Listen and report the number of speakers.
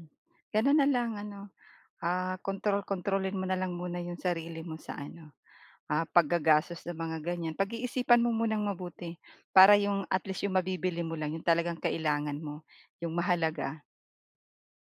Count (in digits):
1